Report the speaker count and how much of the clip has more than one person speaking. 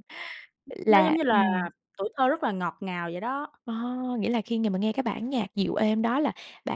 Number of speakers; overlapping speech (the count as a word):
two, about 9%